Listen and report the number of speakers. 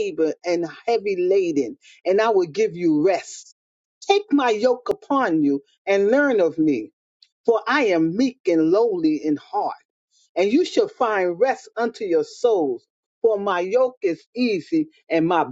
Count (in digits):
1